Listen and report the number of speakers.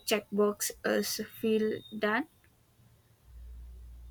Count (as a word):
one